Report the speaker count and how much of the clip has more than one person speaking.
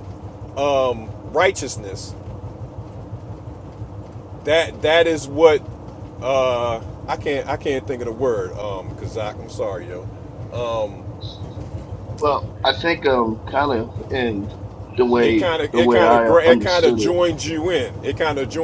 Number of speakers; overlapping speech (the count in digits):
2, about 11%